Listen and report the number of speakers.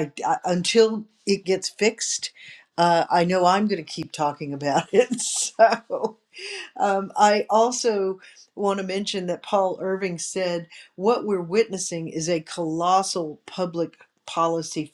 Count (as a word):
one